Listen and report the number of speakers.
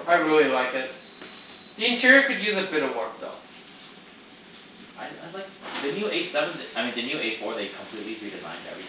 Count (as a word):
two